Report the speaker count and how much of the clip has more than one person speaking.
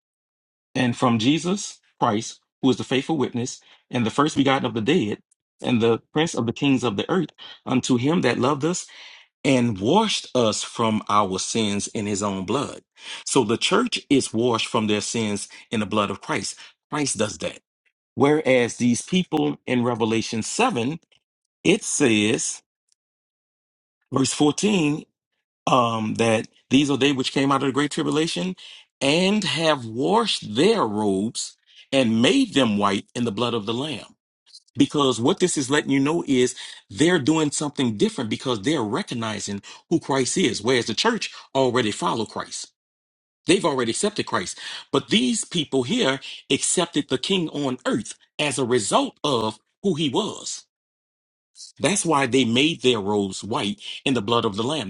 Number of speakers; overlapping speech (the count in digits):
1, no overlap